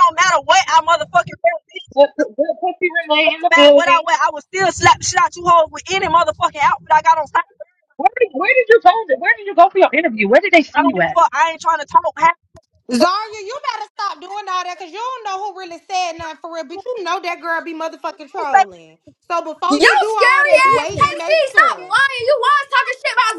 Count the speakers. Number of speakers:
4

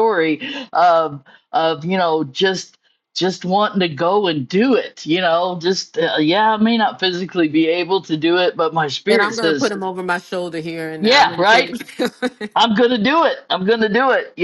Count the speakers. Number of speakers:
2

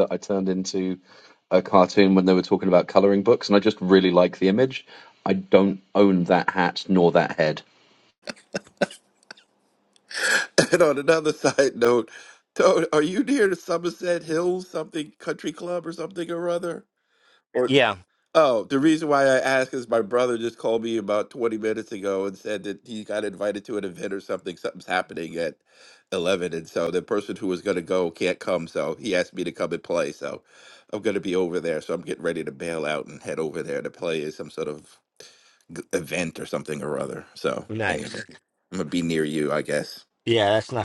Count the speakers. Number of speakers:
3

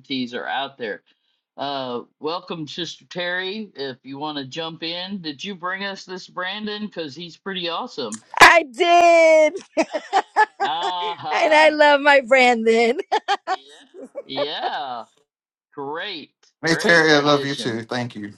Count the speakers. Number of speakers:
3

